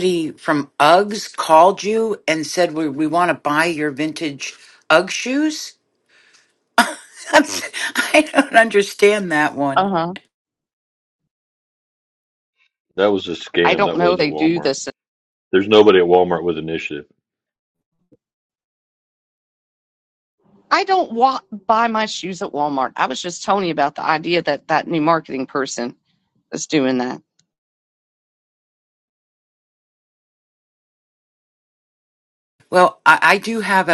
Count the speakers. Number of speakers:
3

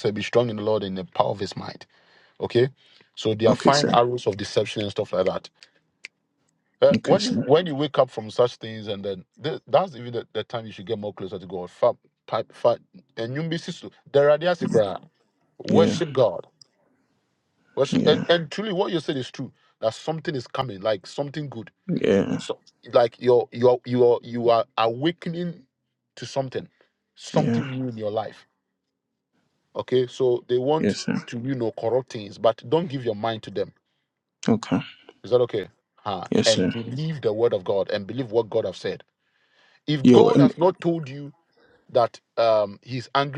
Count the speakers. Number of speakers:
2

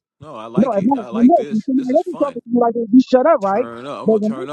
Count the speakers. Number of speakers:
2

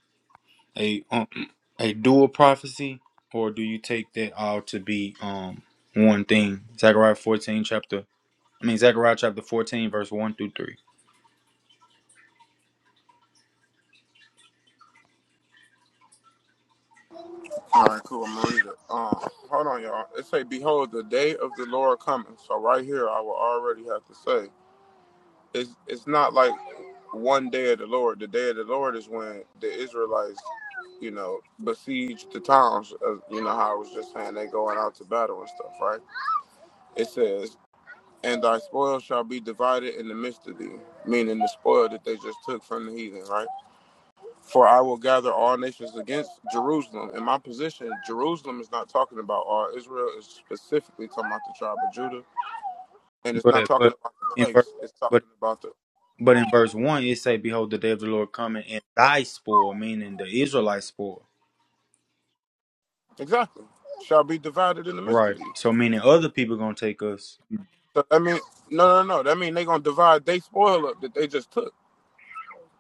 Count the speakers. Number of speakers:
2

